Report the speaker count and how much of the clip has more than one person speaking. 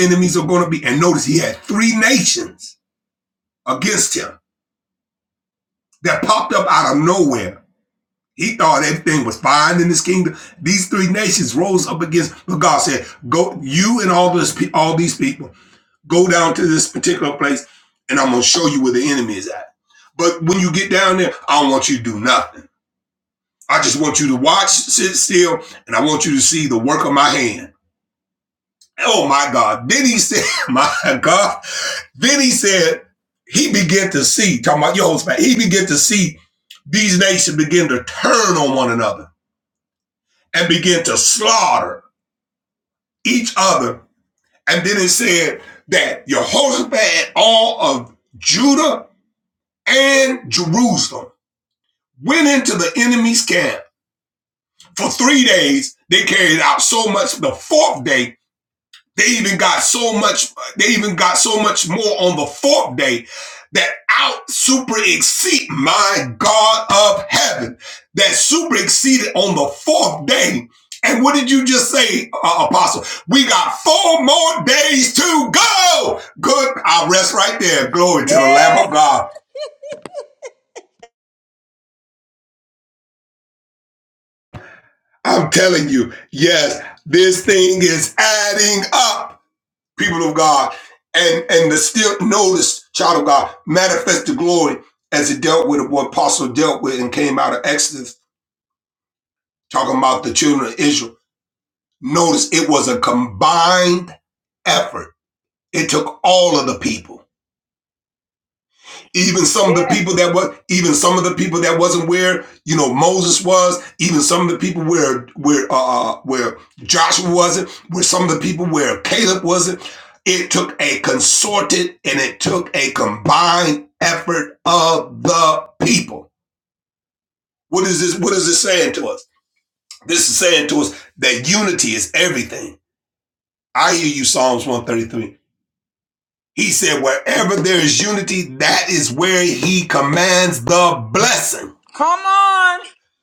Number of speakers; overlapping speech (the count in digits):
2, under 1%